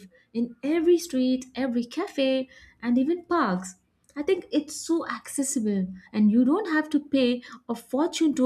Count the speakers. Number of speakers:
1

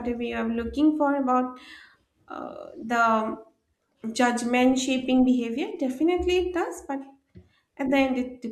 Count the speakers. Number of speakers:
1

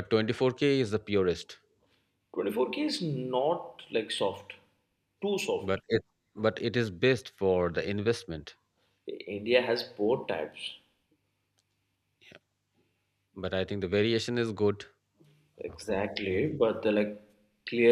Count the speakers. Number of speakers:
2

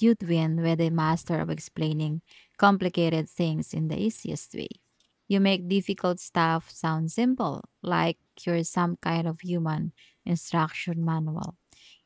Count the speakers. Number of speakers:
1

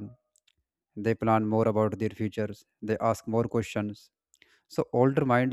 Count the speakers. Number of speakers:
1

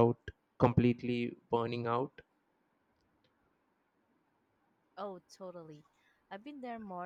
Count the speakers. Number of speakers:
2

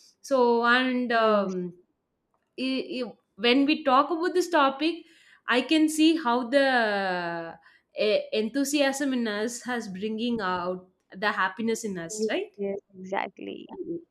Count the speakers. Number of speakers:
2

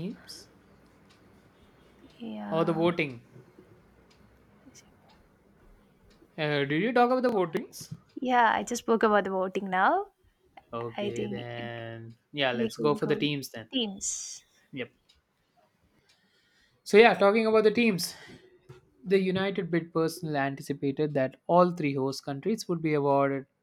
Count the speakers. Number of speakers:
2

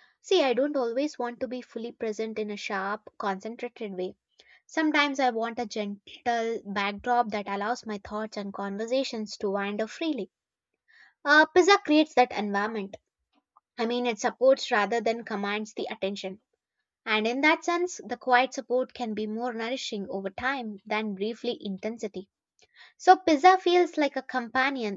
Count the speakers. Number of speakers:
1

